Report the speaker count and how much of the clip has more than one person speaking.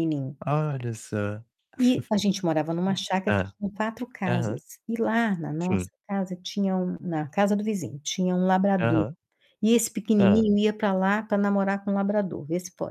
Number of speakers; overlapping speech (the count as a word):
two, about 10%